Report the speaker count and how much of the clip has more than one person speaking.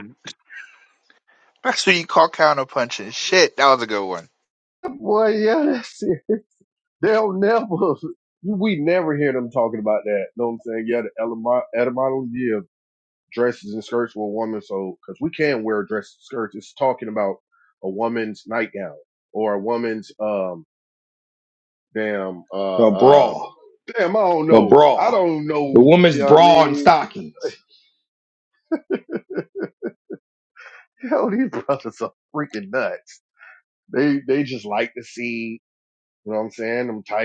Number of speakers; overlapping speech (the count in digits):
3, about 7%